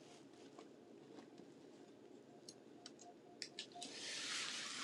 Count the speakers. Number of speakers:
0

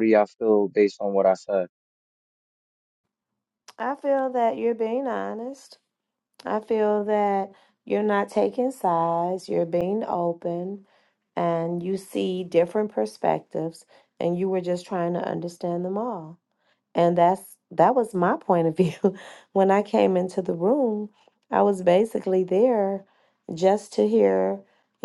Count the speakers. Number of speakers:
2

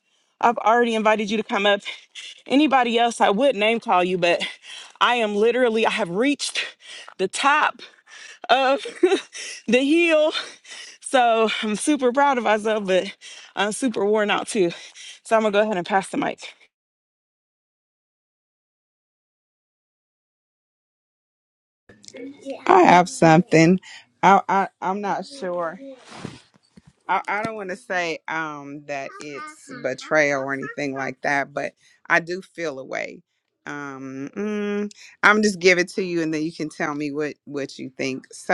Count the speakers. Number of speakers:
2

